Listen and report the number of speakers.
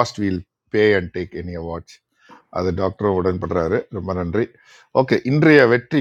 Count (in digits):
1